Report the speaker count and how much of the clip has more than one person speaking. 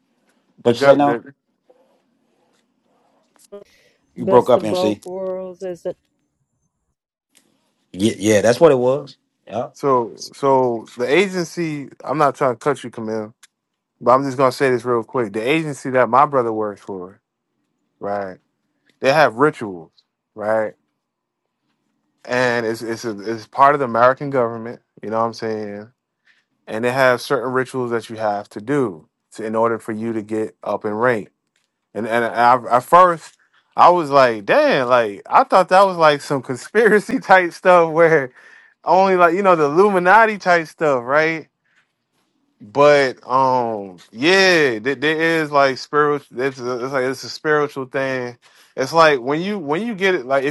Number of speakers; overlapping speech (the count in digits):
3, about 3%